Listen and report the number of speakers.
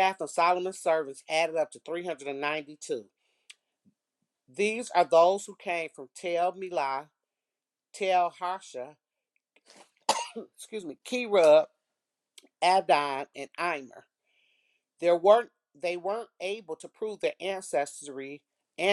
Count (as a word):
one